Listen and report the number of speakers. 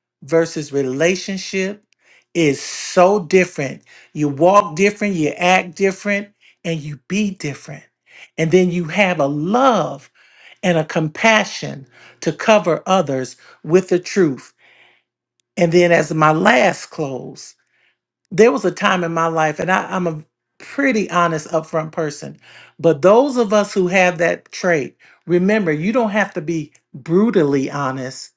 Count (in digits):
1